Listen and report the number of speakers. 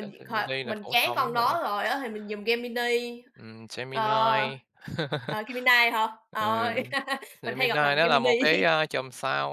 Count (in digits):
2